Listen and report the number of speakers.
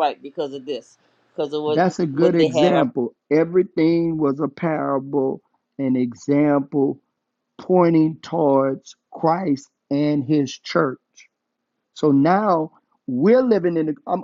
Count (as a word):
two